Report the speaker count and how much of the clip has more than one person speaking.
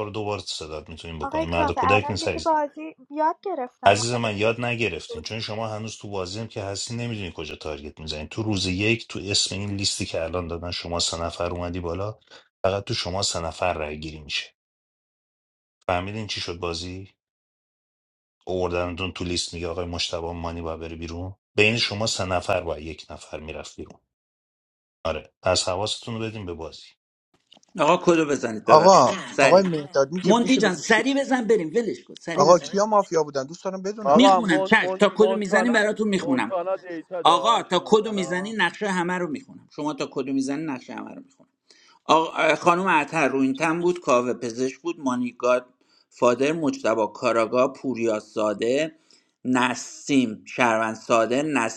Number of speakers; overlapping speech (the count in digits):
5, about 14%